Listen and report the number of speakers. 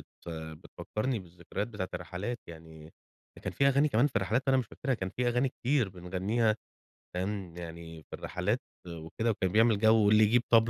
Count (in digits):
1